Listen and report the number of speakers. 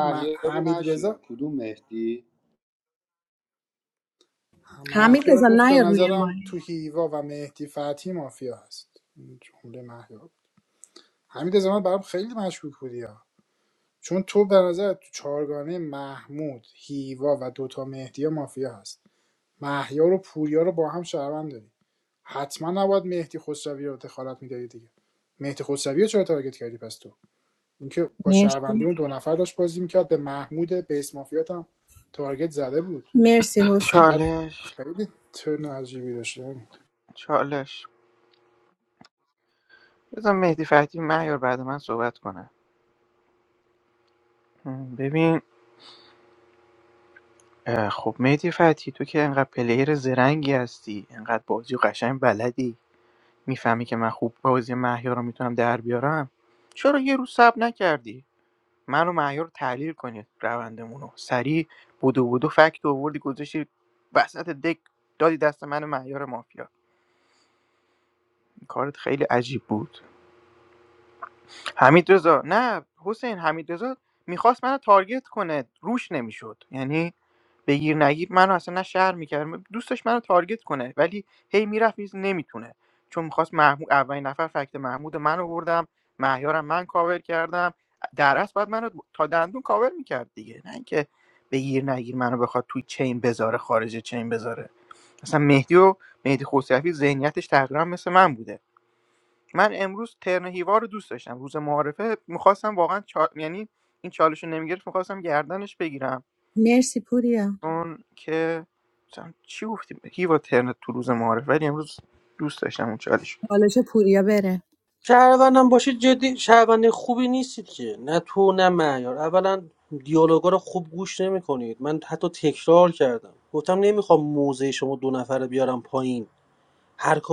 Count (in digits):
5